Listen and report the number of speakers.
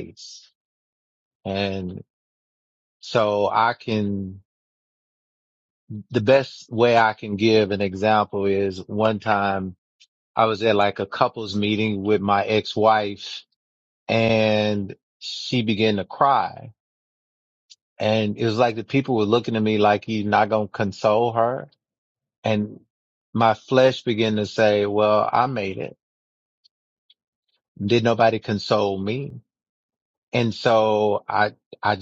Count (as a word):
one